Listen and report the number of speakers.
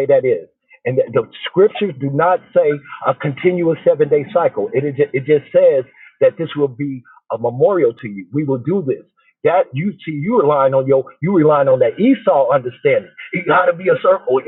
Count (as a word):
one